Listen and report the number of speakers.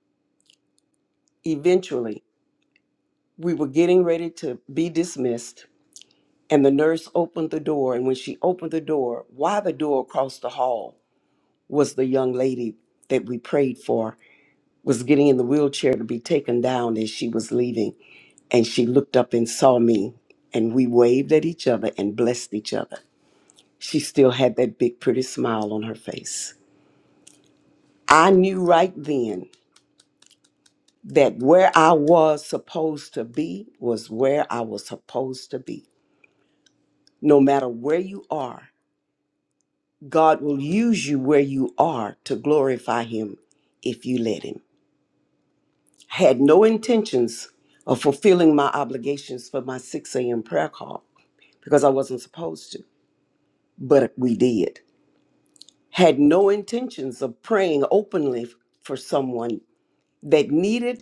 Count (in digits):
1